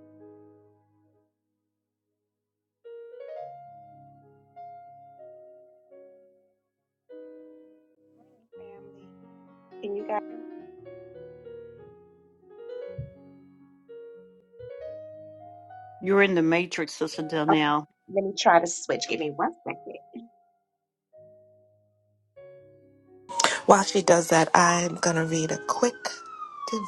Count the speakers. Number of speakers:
3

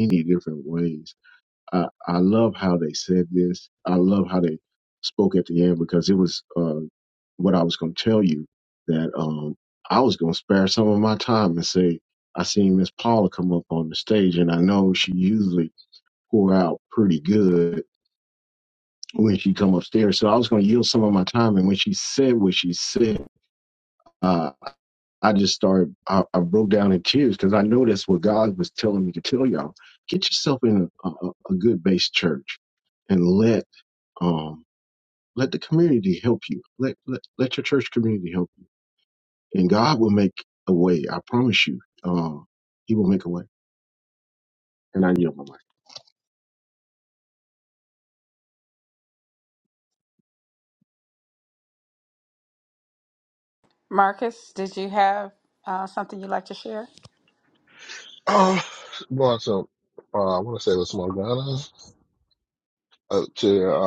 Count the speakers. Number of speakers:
3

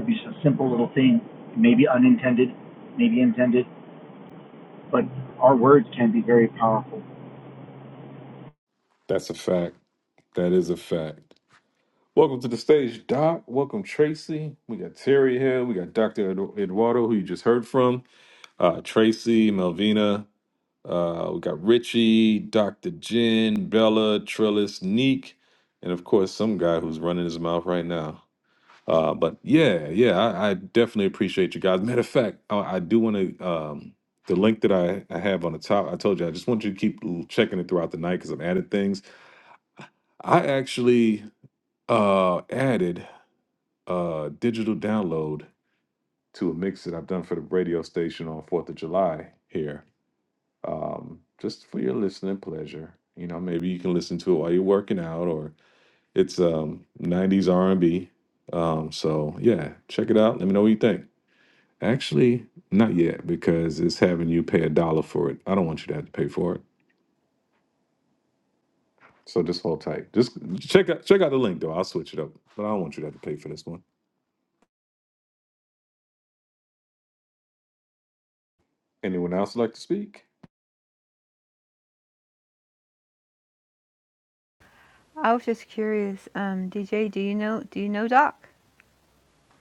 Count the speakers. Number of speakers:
3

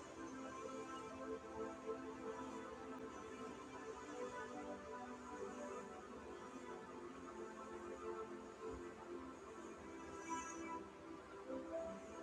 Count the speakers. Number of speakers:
0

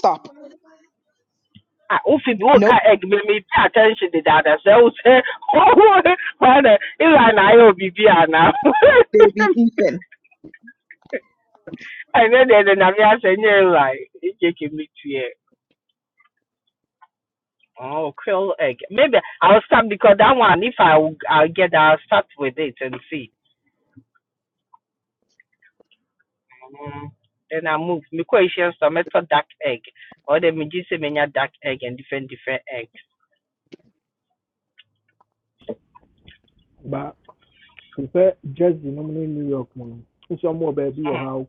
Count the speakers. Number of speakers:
3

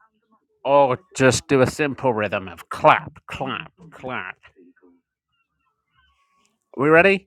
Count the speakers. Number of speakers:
1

